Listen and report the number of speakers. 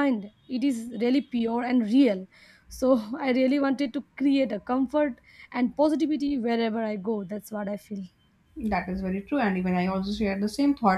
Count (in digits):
2